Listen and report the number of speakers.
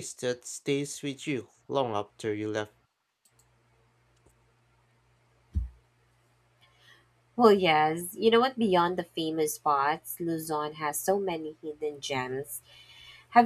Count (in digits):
2